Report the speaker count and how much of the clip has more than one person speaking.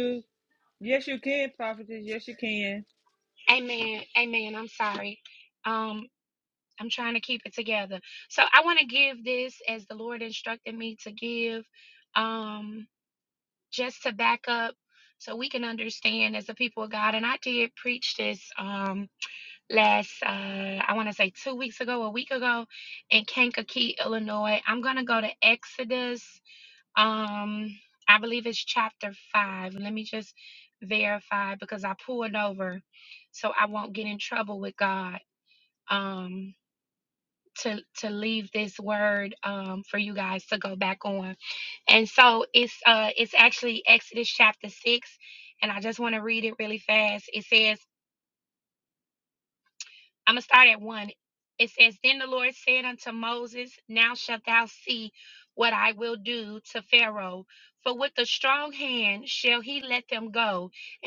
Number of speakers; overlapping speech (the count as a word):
two, under 1%